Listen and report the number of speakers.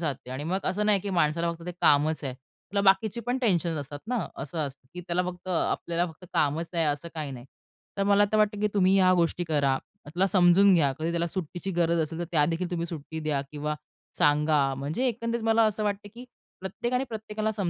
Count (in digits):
1